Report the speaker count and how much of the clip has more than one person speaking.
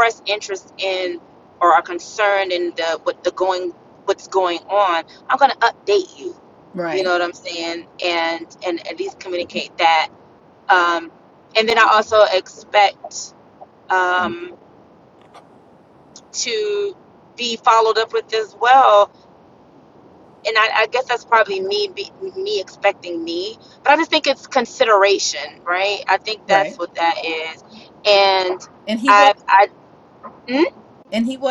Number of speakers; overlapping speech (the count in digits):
2, about 2%